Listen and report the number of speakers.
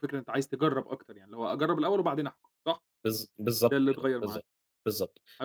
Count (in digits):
2